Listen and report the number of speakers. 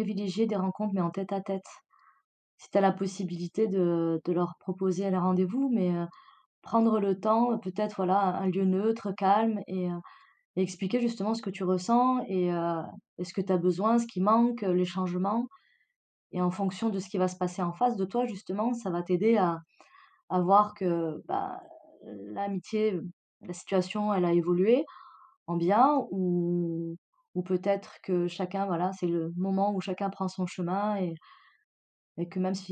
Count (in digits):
1